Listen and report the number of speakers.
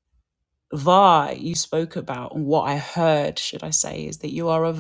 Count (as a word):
one